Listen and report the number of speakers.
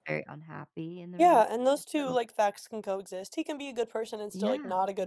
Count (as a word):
two